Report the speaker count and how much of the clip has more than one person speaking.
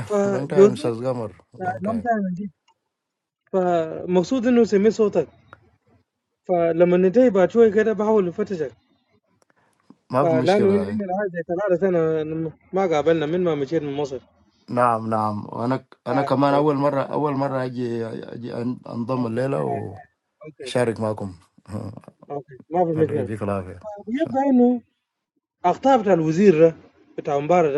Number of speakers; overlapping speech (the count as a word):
two, about 12%